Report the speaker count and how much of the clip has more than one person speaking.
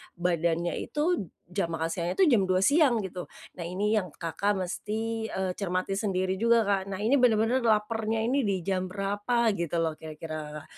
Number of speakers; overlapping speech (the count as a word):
one, no overlap